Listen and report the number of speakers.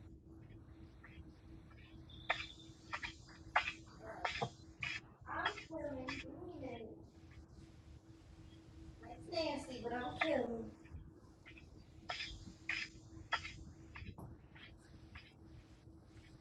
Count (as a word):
zero